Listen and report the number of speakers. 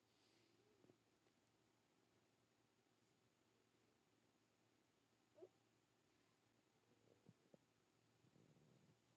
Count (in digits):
0